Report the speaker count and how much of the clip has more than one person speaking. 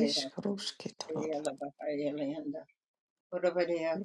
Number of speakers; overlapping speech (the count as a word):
two, about 15%